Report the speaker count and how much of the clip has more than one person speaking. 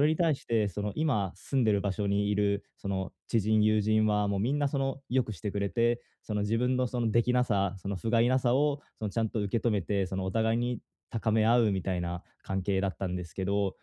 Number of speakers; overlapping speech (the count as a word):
one, no overlap